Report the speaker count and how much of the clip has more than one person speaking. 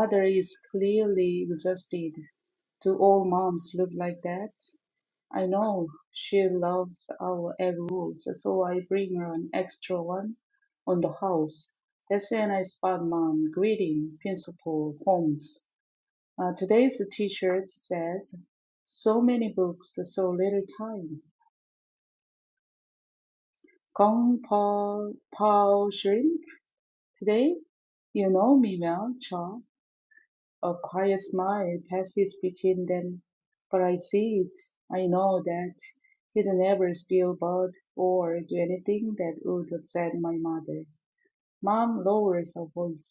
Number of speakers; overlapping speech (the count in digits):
1, no overlap